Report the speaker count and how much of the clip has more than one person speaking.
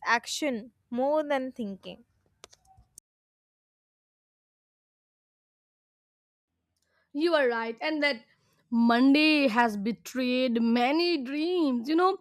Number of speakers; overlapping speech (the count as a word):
two, no overlap